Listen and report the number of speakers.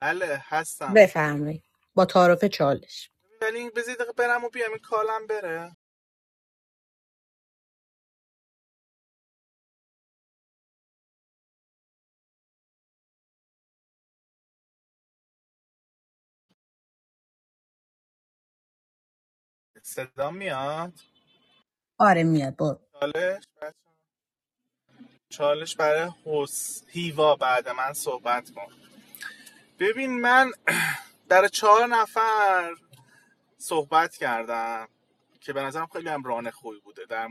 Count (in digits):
2